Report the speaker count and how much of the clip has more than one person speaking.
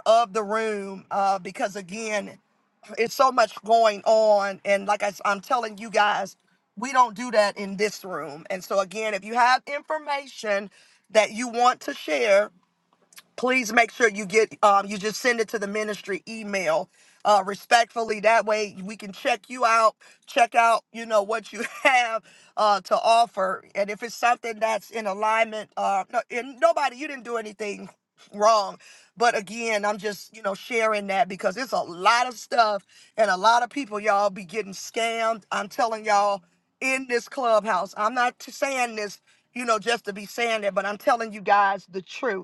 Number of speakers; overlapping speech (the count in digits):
1, no overlap